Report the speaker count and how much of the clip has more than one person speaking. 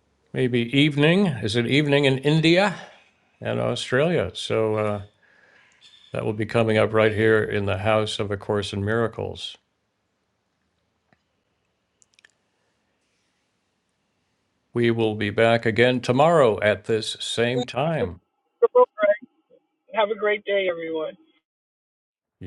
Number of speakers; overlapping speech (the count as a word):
two, no overlap